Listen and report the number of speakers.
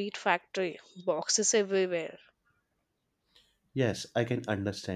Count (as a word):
two